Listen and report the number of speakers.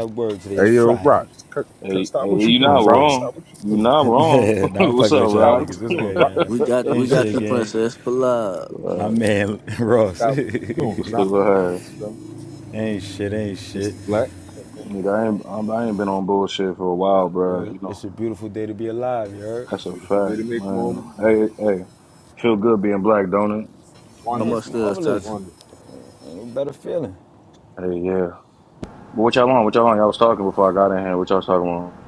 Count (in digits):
4